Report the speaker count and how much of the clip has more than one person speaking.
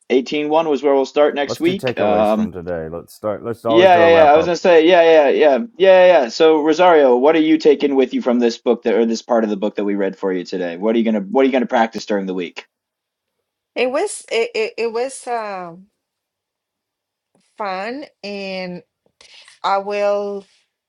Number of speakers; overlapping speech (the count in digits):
3, about 9%